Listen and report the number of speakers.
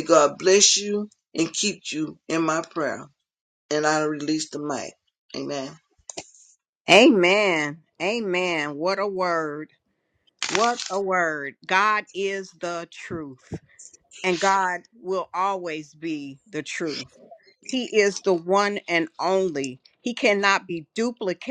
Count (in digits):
2